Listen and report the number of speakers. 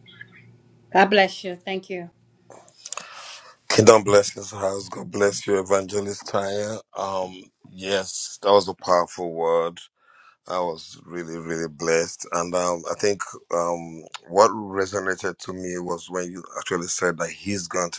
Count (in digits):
2